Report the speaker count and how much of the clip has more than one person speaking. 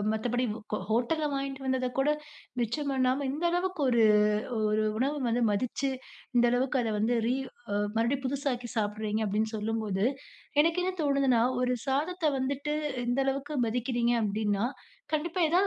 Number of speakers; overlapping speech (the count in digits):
1, no overlap